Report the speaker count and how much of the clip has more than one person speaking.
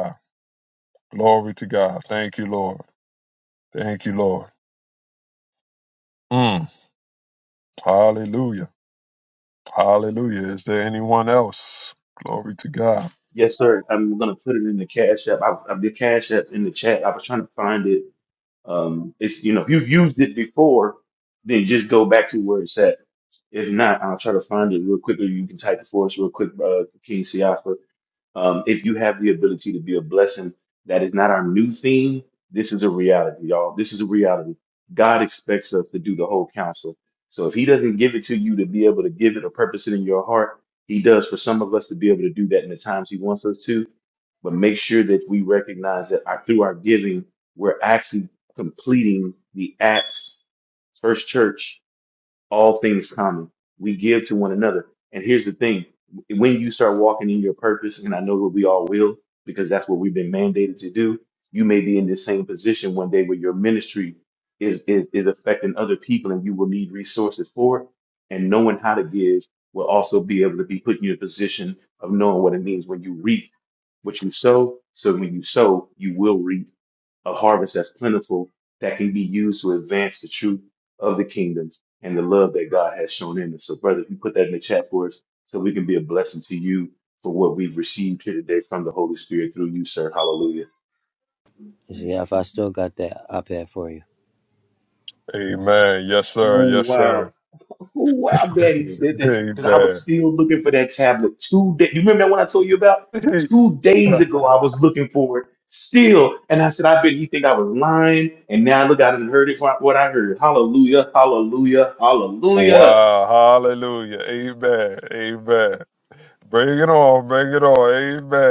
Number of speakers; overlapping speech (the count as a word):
three, about 2%